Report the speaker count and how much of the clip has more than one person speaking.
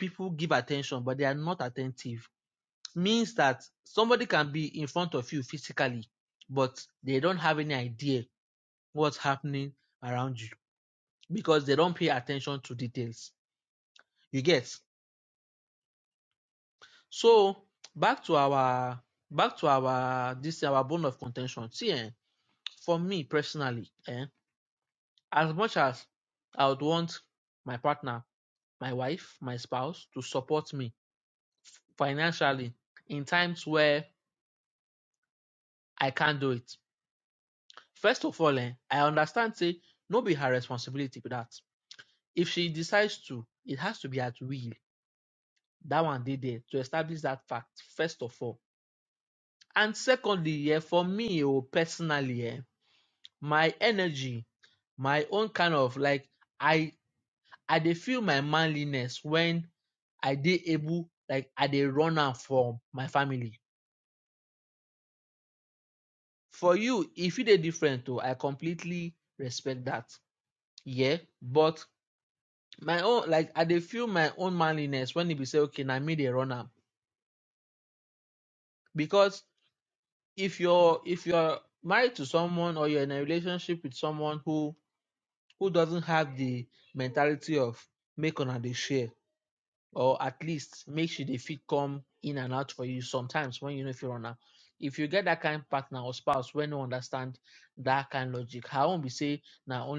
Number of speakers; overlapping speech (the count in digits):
1, no overlap